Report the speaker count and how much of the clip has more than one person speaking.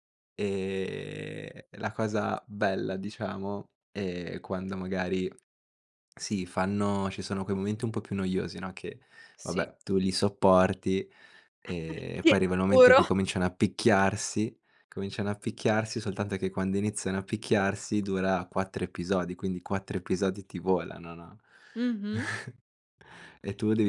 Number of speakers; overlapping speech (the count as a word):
two, about 2%